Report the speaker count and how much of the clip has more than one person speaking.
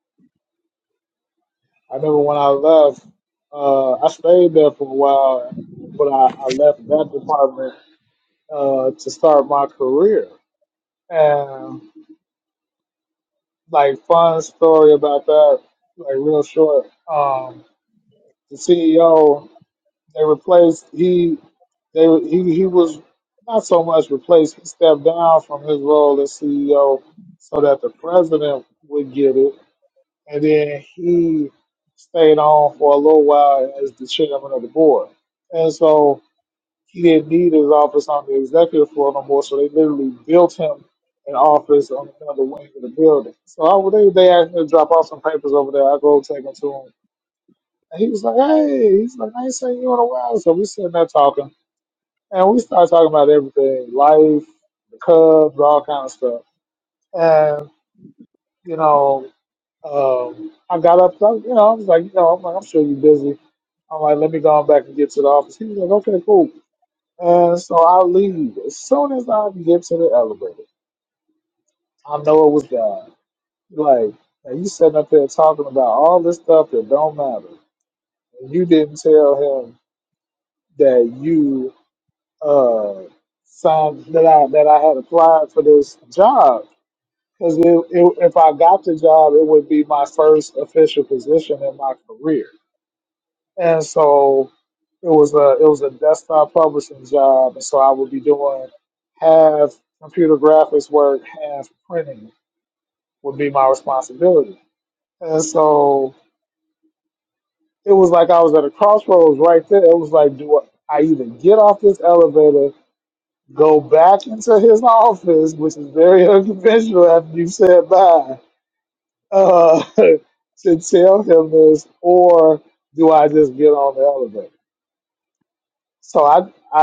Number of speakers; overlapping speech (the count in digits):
1, no overlap